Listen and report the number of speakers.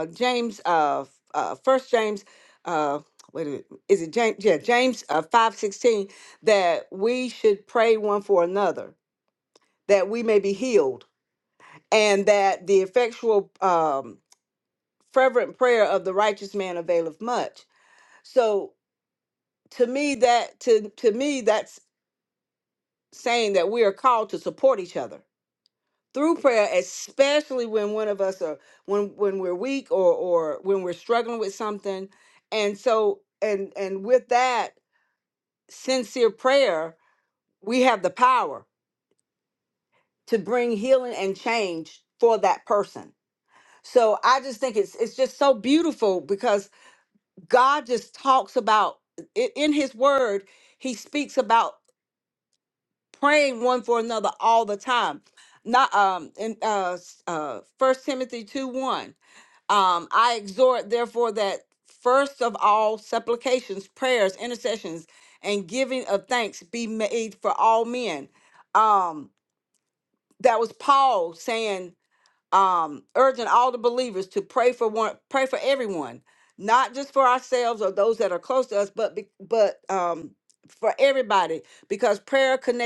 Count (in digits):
1